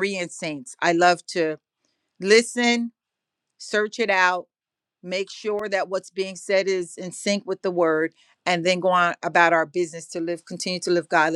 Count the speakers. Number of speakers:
one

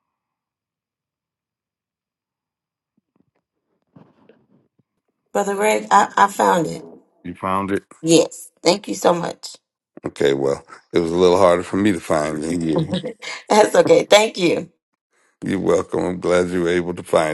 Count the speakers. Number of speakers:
two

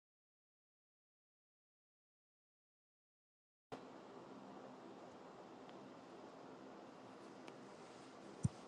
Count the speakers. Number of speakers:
zero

